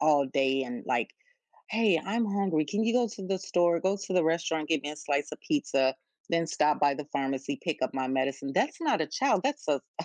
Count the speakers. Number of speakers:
1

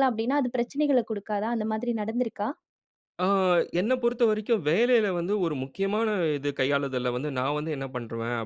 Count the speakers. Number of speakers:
2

